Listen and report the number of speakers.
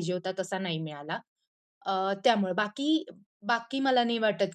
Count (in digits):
1